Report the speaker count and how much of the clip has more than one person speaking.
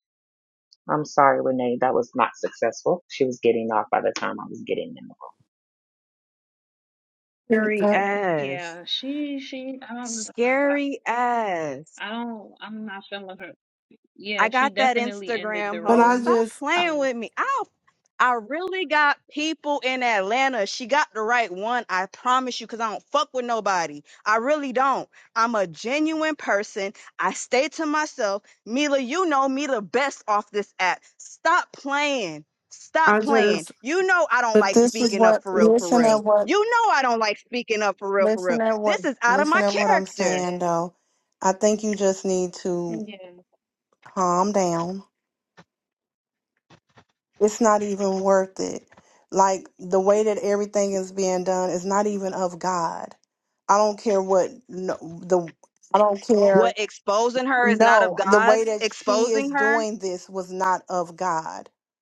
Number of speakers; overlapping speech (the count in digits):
4, about 15%